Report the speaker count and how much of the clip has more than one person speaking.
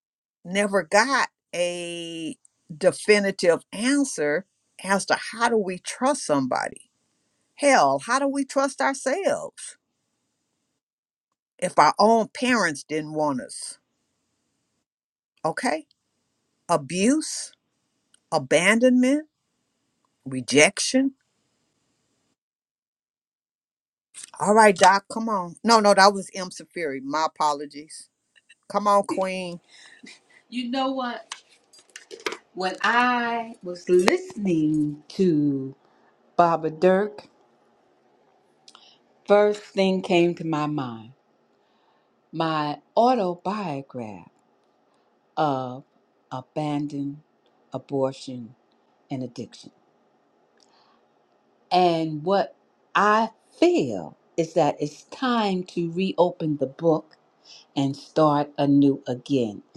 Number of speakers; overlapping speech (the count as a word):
two, no overlap